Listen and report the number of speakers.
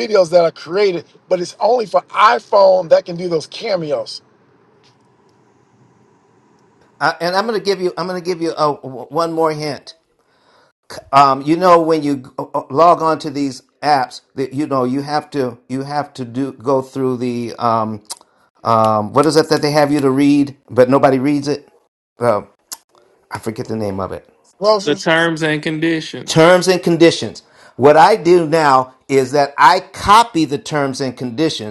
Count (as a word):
three